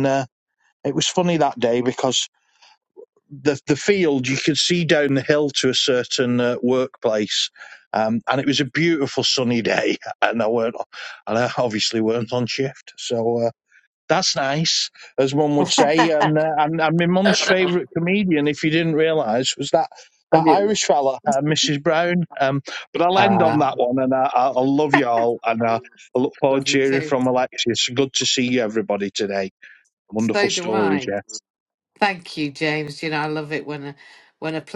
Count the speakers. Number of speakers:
two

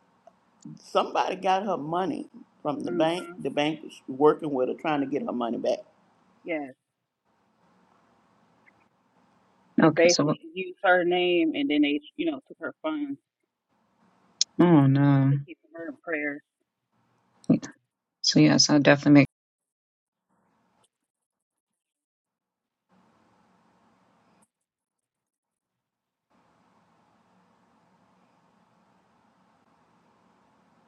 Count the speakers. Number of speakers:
three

